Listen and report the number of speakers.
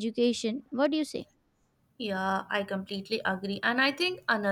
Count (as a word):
two